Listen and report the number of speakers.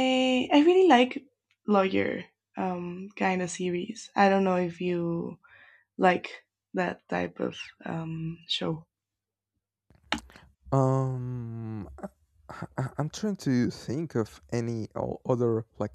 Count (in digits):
2